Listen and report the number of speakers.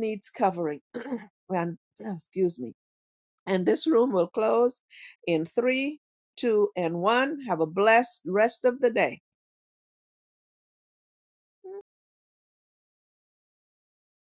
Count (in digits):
1